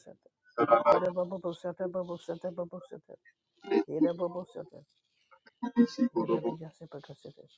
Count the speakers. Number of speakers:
1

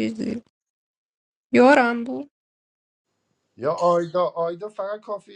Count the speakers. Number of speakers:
2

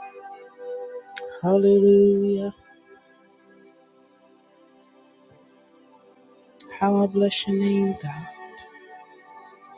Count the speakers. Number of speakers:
1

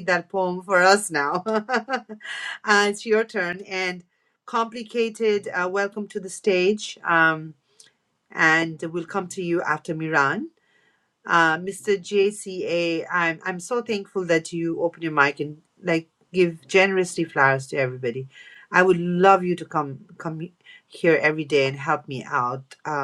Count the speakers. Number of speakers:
1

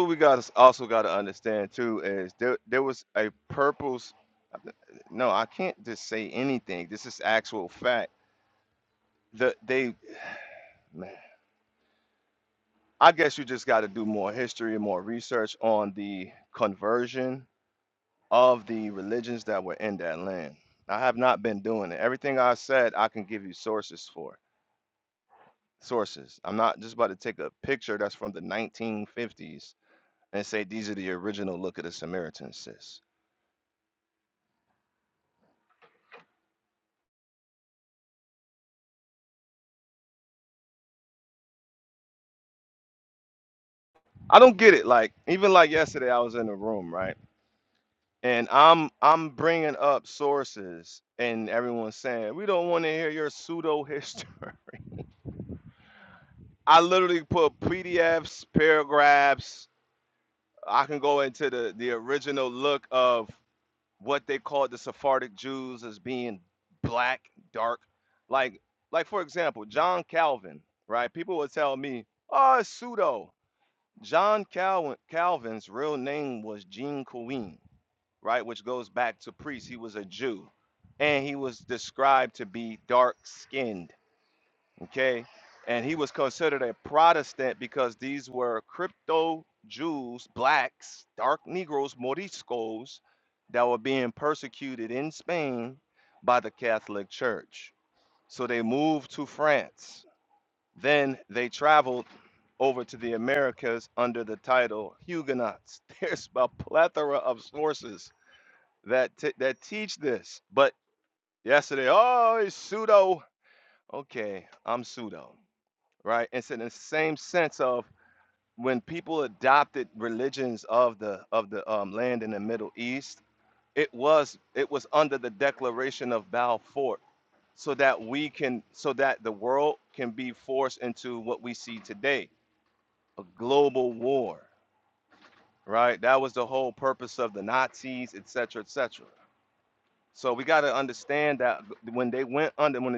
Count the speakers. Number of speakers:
1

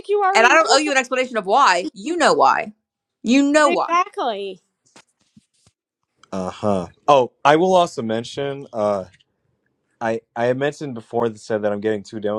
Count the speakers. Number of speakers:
3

